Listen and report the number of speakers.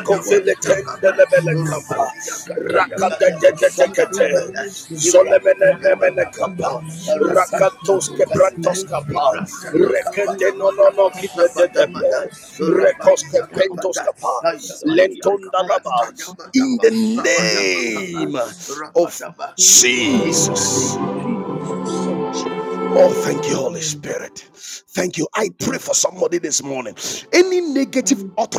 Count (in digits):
3